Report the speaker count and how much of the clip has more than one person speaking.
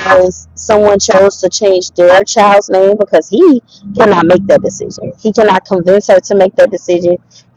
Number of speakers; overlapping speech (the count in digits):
1, no overlap